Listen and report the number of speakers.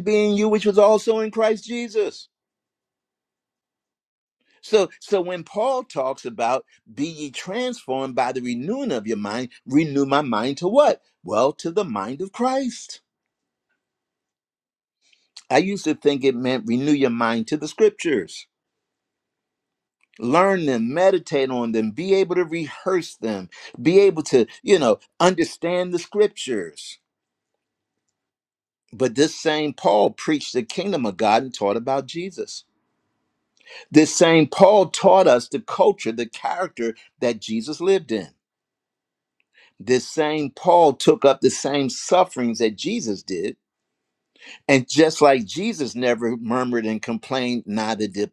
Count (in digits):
1